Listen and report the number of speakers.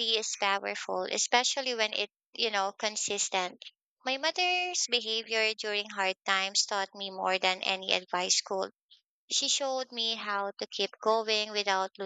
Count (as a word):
one